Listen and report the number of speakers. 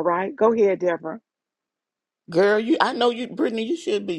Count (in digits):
2